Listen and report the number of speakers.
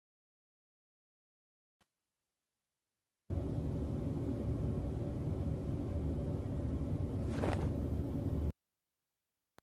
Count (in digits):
0